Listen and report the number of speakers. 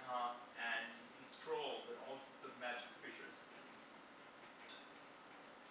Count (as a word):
one